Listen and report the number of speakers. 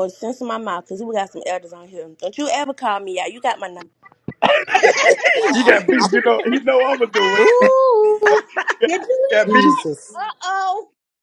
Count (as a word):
four